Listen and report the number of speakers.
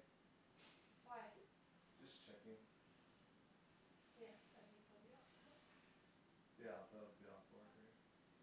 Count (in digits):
2